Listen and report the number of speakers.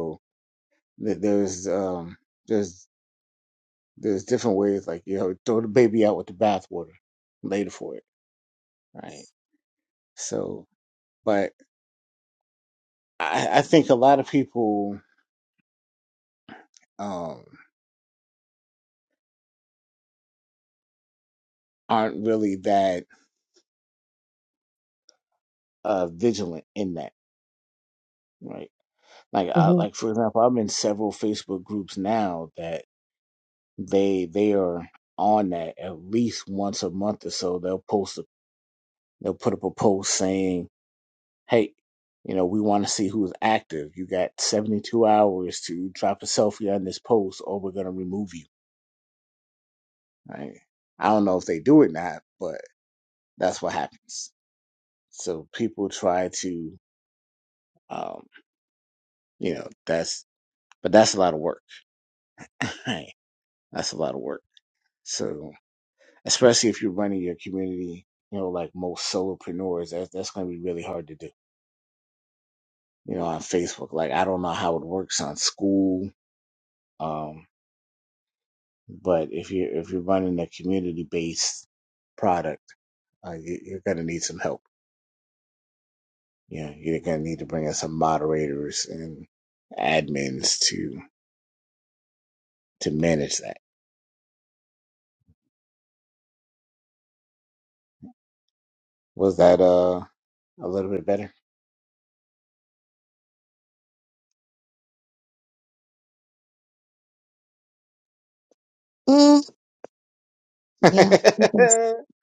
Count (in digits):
2